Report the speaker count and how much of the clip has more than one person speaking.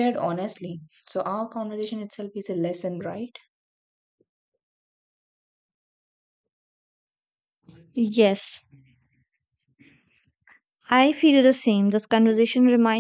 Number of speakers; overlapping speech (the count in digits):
2, no overlap